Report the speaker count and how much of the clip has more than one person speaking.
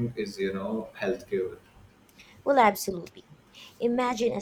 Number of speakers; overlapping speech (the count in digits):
2, no overlap